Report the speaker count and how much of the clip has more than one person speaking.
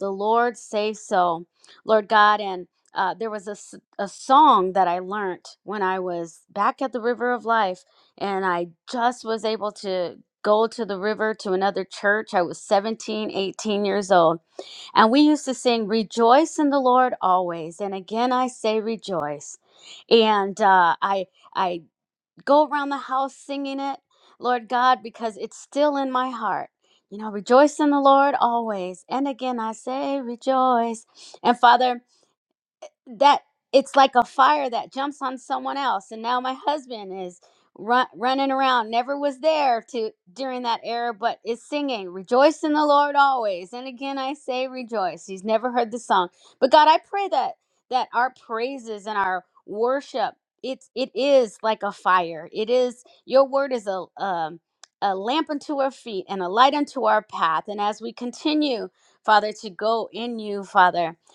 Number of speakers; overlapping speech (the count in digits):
1, no overlap